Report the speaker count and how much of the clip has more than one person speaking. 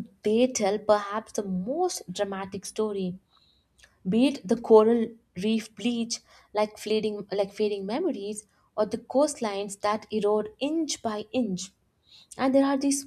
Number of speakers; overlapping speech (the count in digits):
1, no overlap